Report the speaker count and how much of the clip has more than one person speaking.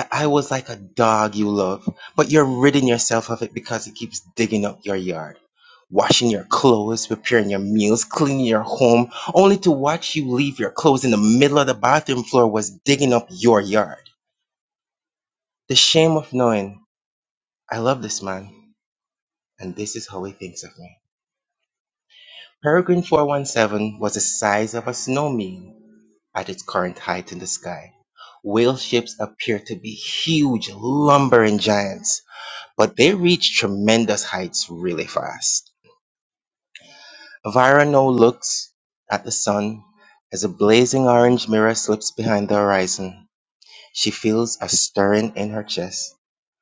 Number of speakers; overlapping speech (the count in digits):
1, no overlap